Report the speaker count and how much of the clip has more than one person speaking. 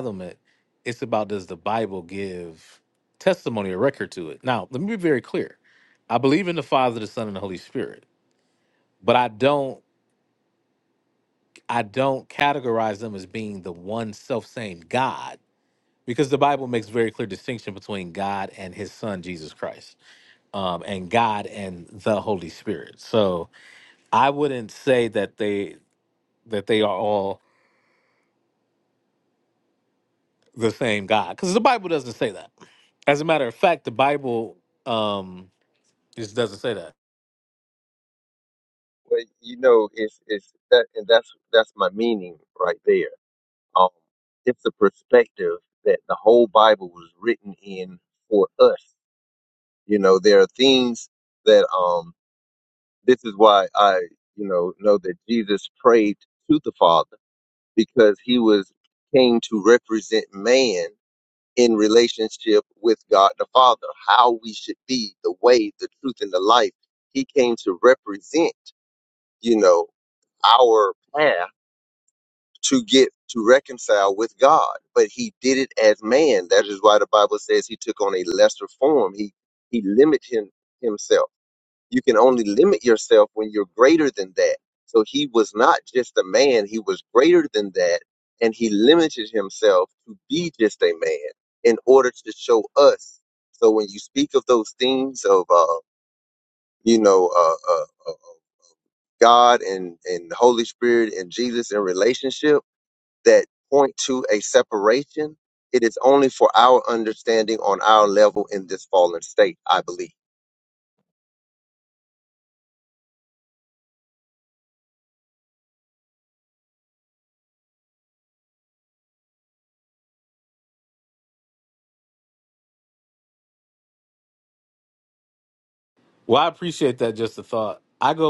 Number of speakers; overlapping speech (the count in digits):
2, no overlap